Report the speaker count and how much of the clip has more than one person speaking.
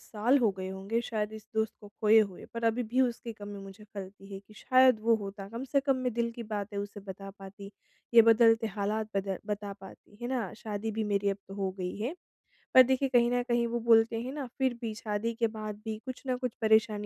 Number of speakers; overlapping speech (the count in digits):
1, no overlap